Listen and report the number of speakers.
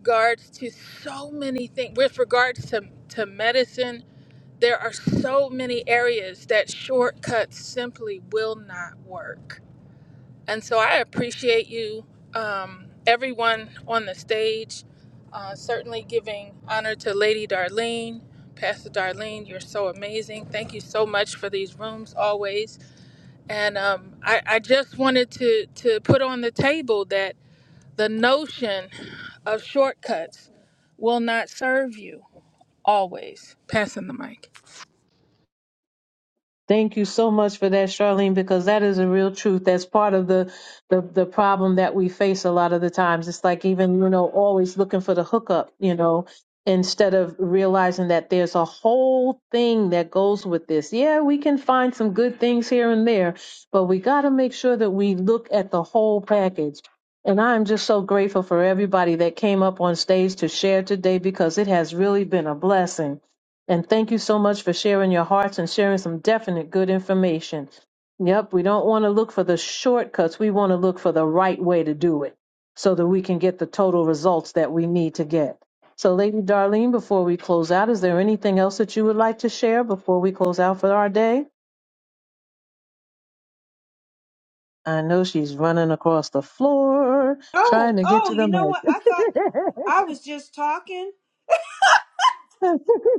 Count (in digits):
3